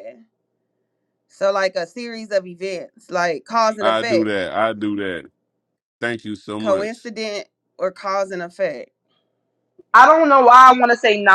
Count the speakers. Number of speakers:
three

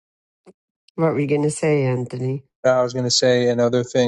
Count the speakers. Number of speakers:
two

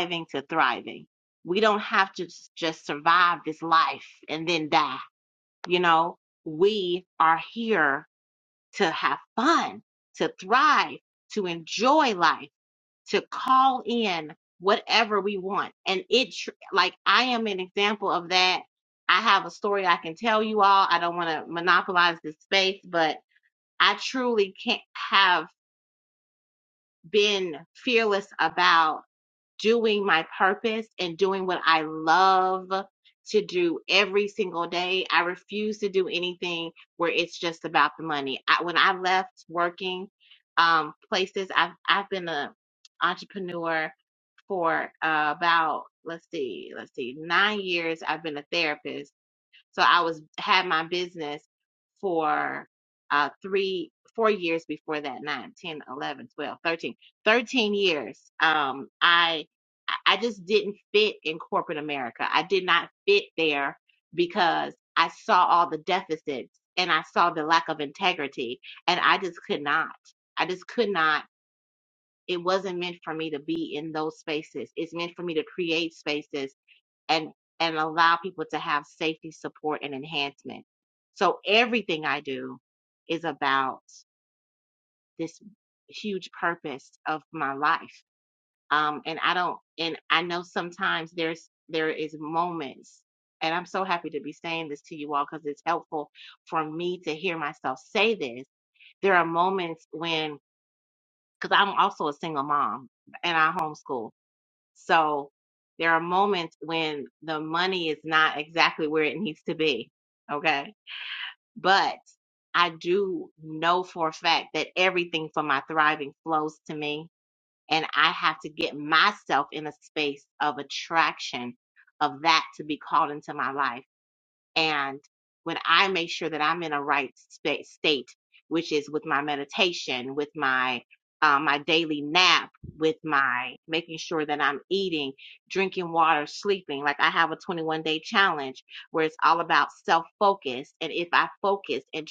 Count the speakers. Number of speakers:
one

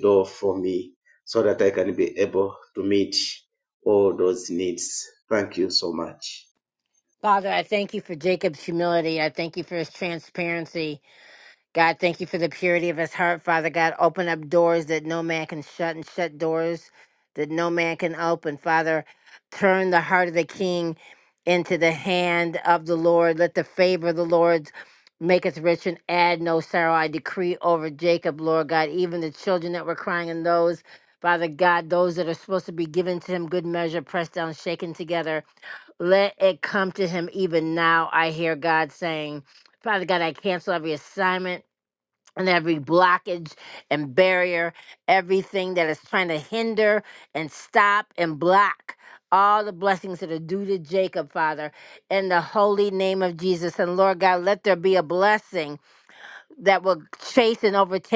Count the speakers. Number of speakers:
two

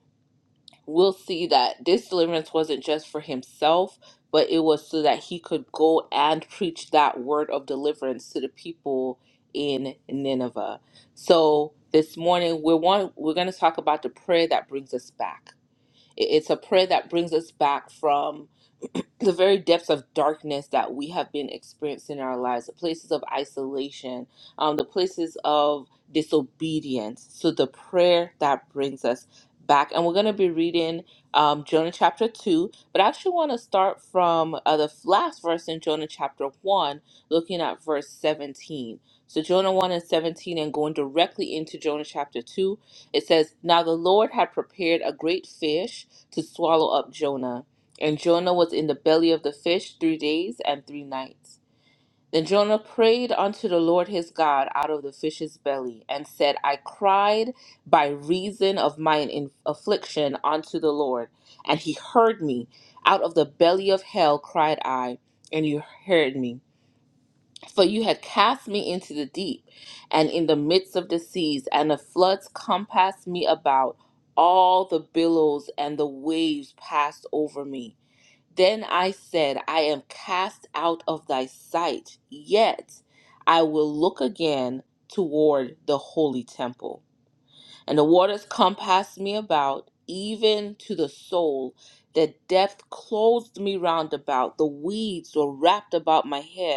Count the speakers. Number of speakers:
one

